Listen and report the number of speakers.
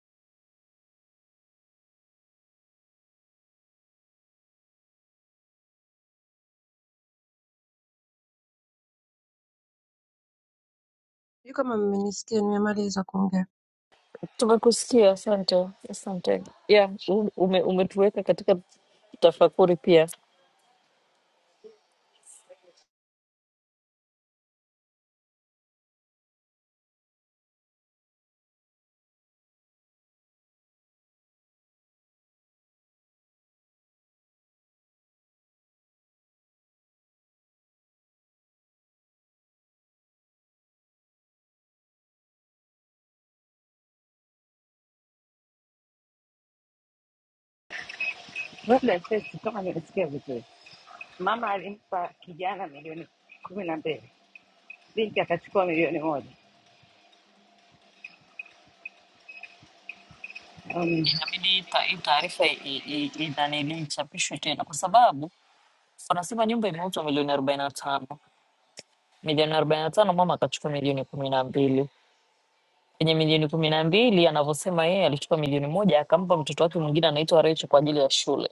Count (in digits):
3